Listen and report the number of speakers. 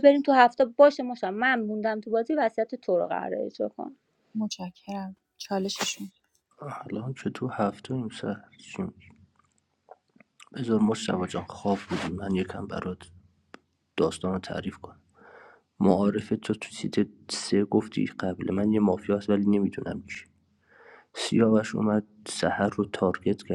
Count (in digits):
3